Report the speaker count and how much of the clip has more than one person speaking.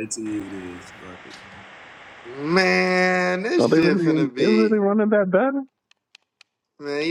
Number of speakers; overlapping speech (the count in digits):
3, about 16%